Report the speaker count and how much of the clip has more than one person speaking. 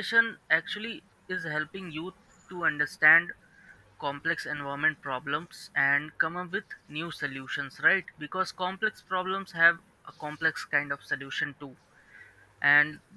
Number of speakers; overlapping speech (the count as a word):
one, no overlap